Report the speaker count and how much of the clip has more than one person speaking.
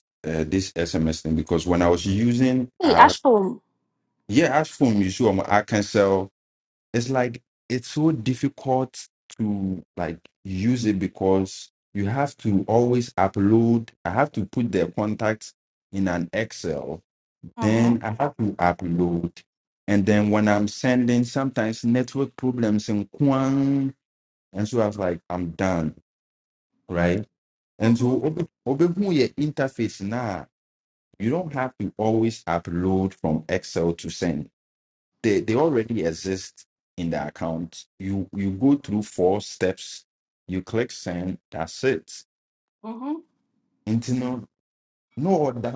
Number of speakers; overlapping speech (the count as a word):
two, about 2%